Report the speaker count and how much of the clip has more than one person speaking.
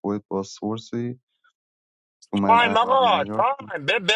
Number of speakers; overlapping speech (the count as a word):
two, about 24%